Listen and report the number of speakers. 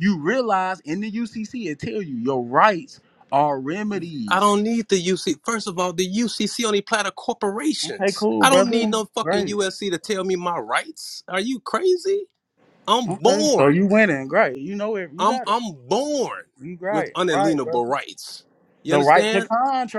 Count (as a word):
two